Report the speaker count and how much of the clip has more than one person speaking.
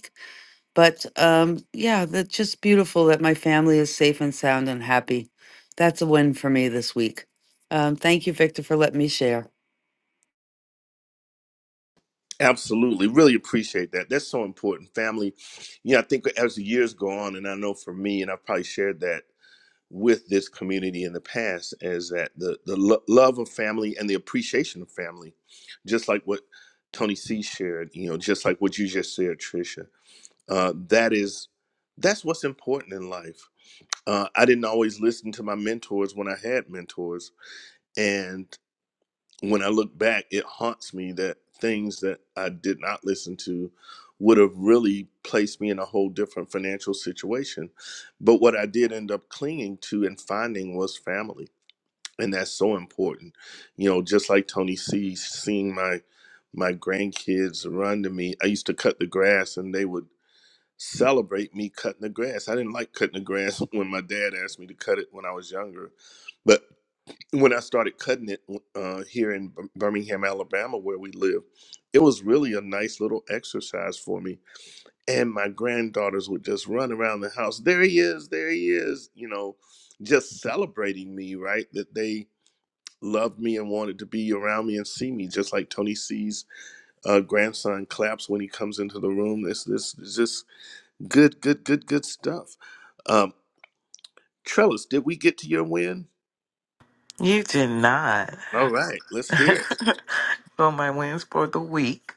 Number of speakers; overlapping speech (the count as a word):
three, no overlap